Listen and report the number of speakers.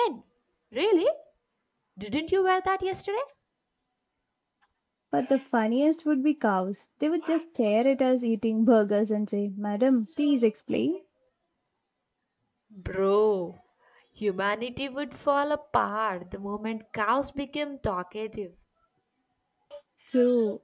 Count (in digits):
2